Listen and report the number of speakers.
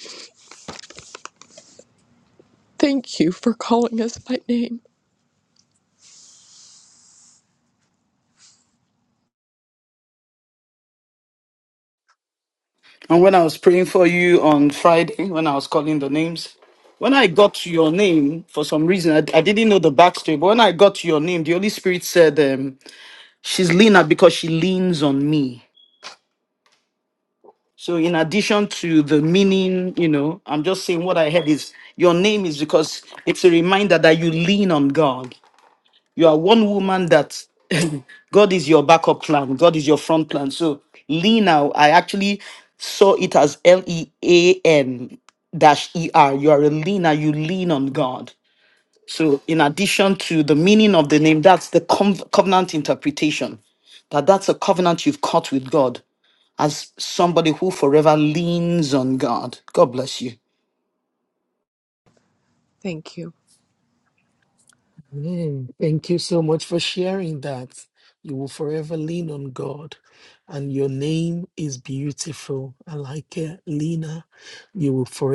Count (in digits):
3